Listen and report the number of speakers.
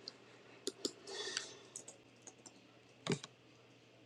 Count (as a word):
zero